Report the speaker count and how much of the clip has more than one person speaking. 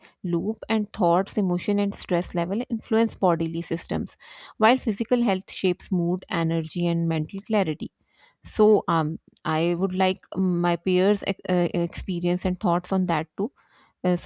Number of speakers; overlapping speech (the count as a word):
one, no overlap